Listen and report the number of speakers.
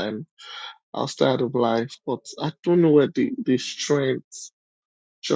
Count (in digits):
1